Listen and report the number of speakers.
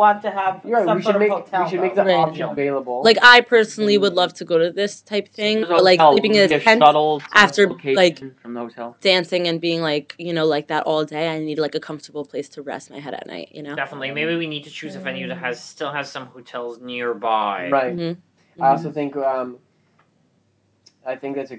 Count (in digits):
5